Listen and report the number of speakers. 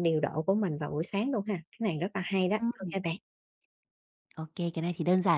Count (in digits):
2